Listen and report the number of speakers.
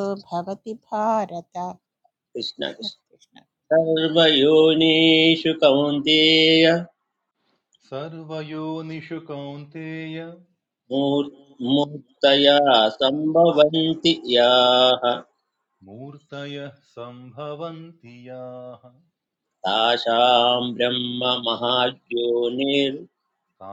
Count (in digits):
3